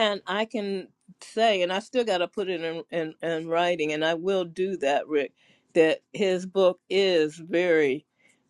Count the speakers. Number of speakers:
1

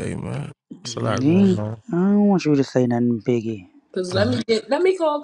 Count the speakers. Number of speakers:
3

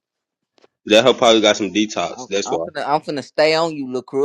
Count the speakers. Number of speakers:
2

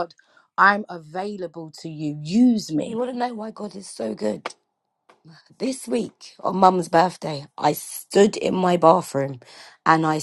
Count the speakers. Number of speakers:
2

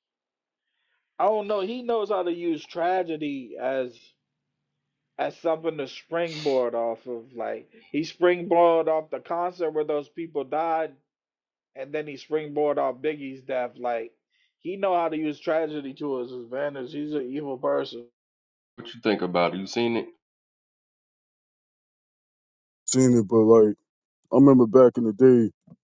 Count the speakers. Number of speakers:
3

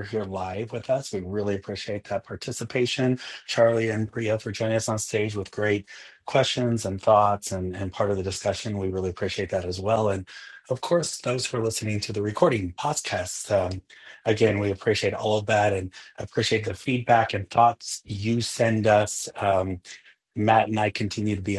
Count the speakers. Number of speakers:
1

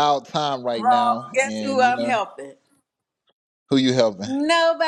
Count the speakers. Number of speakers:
2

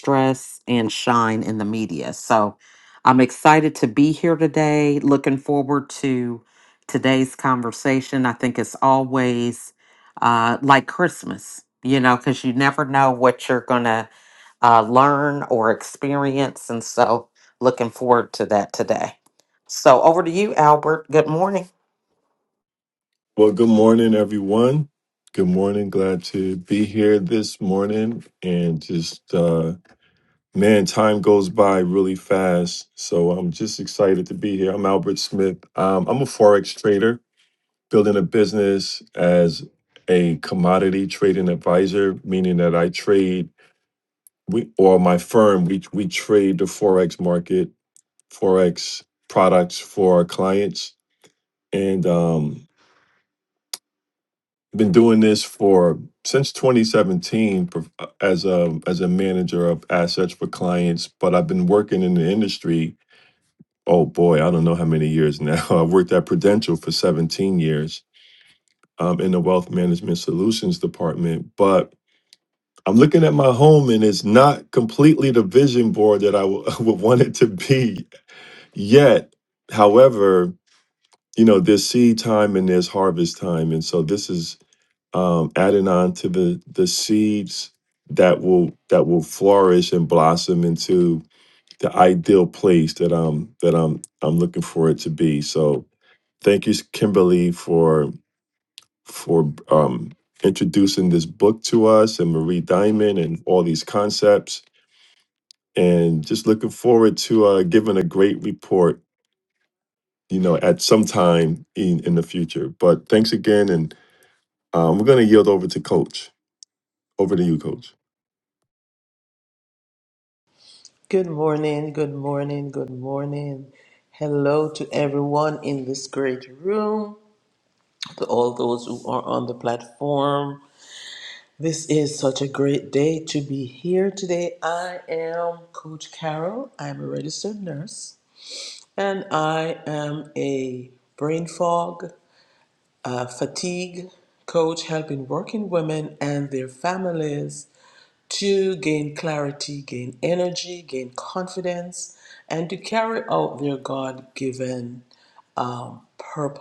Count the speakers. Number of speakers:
3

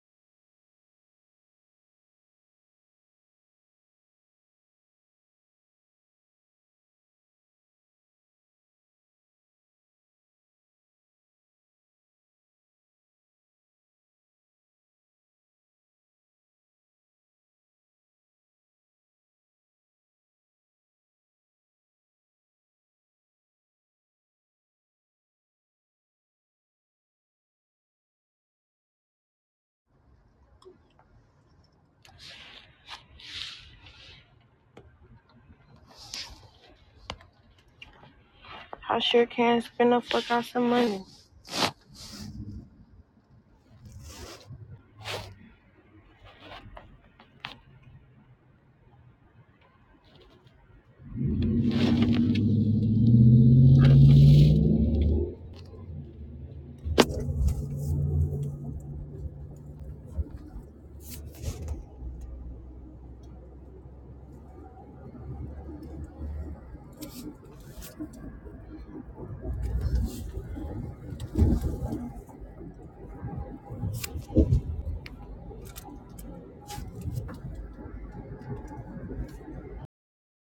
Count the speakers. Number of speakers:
1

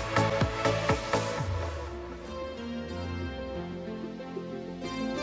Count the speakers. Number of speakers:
0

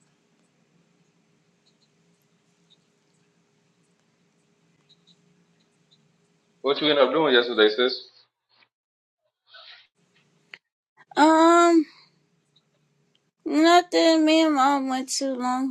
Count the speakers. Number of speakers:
2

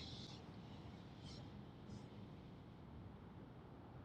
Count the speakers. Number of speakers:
0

